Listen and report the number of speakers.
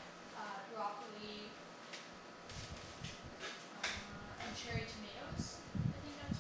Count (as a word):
one